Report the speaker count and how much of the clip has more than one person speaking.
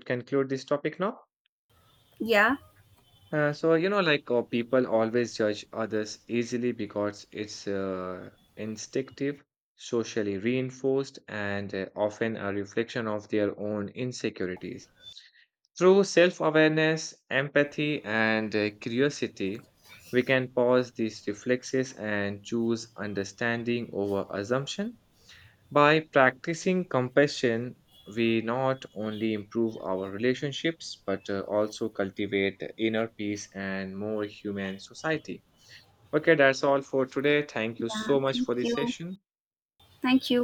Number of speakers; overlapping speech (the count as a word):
two, about 3%